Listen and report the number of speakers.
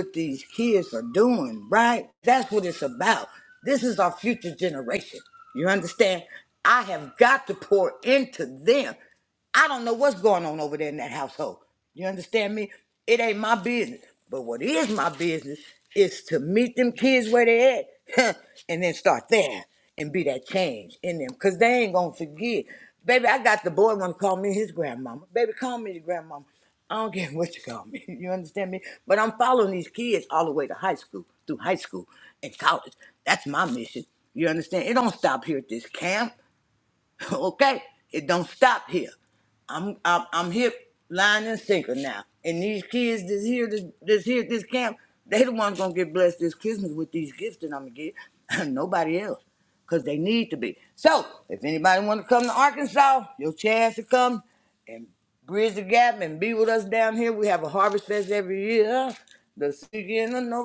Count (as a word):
one